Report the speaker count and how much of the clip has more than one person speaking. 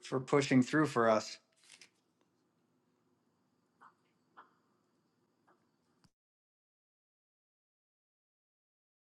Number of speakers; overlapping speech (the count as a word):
one, no overlap